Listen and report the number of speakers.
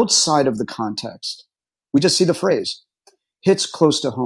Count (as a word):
one